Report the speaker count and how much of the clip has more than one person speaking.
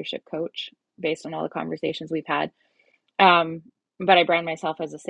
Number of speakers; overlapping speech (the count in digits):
1, no overlap